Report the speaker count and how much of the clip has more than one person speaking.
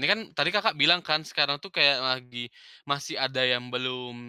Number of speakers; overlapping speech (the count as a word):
one, no overlap